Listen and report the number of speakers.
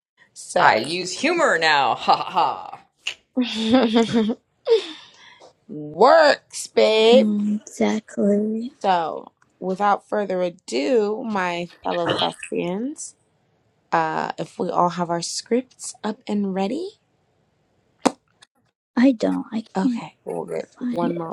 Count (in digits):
3